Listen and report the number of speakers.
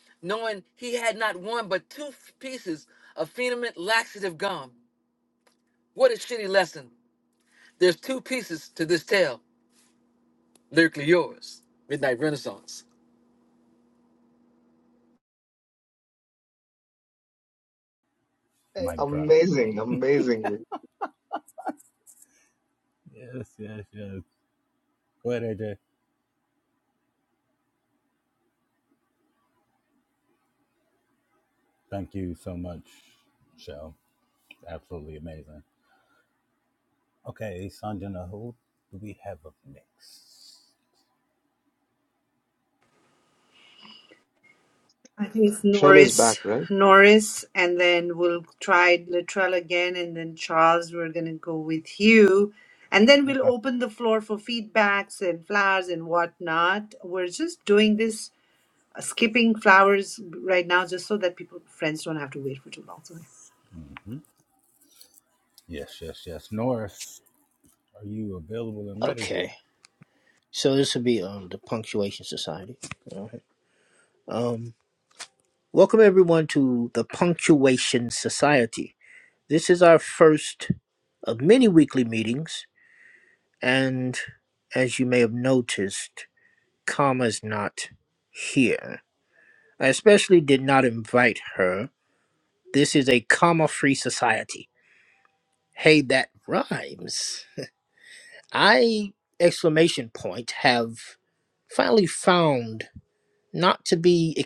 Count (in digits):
5